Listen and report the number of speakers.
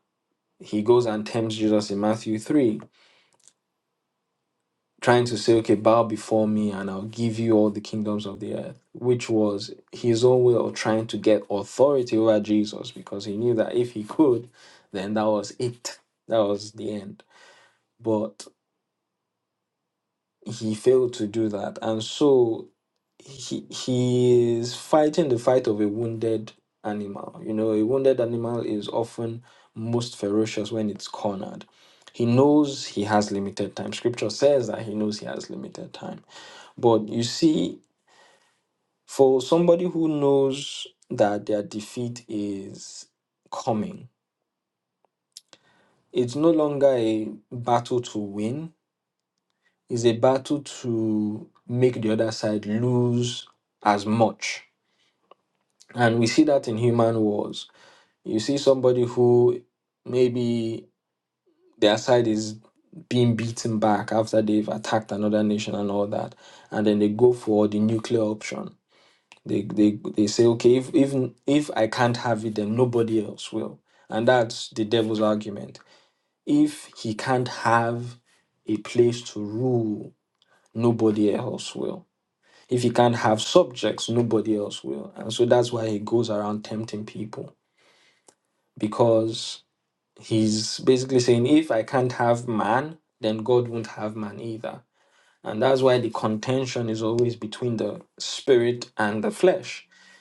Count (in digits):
1